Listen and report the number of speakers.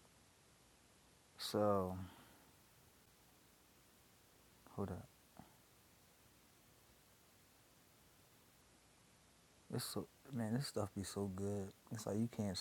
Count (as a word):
one